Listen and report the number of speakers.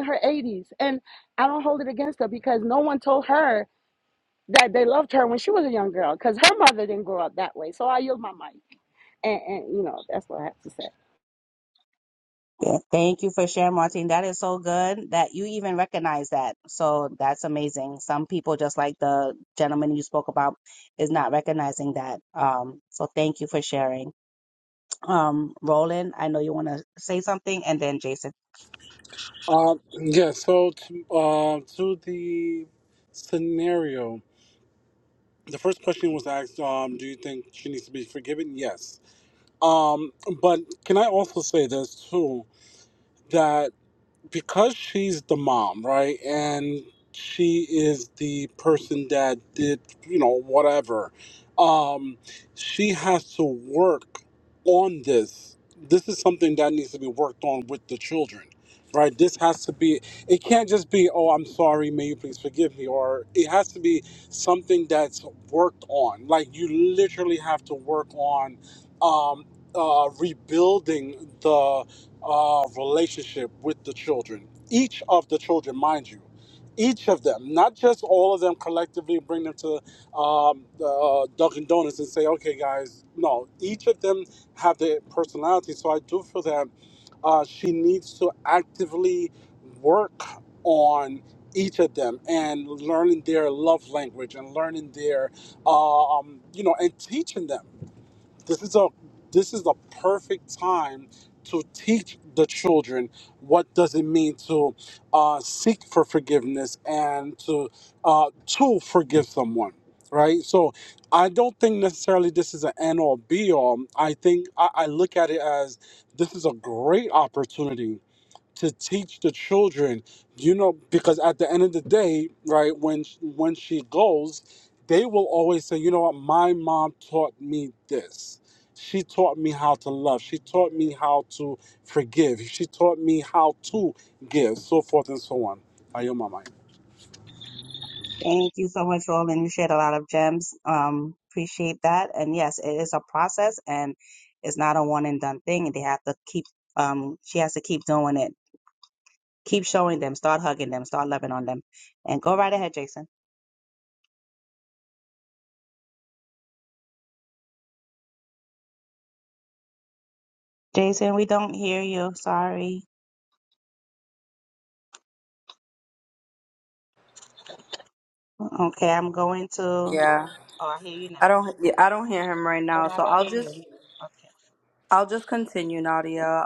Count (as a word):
four